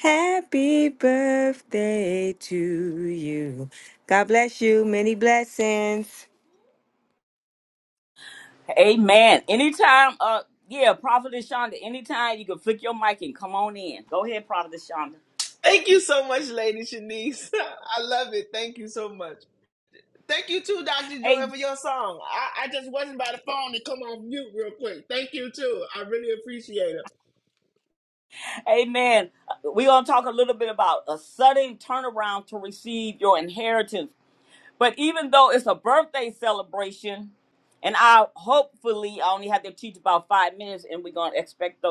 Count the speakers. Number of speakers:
3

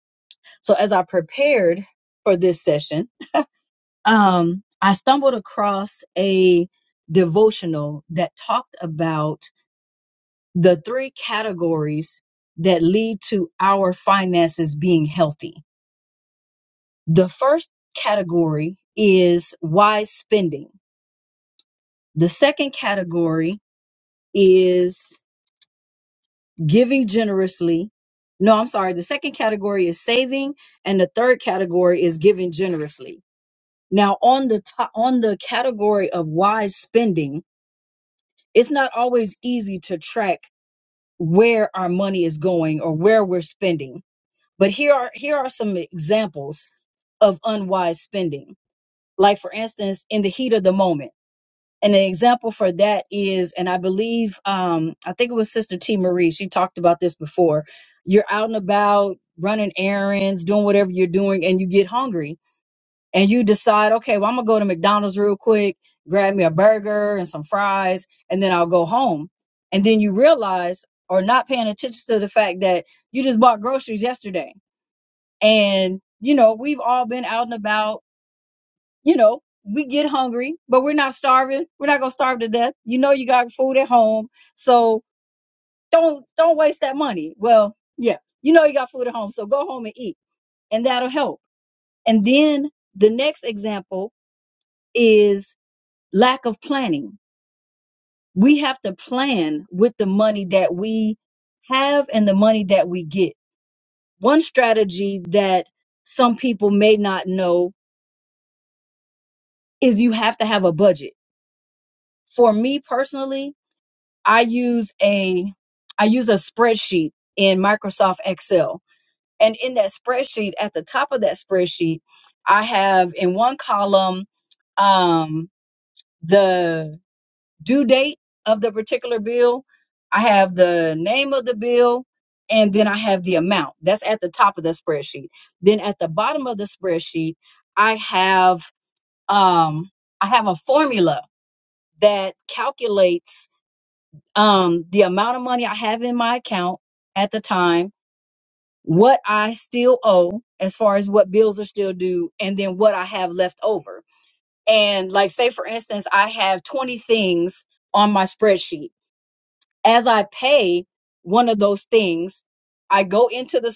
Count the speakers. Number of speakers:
1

